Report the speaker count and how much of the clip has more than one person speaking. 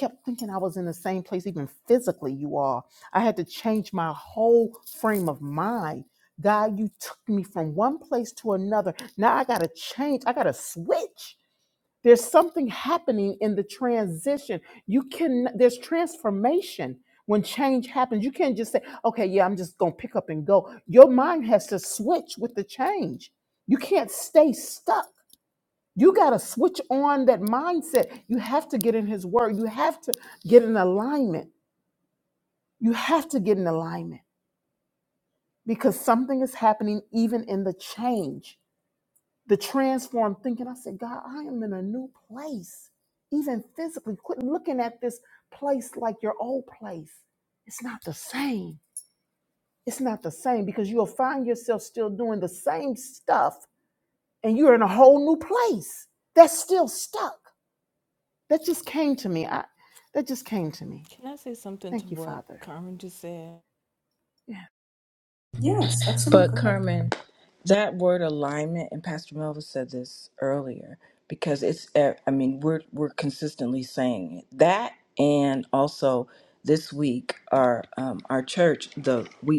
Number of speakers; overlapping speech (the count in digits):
3, about 2%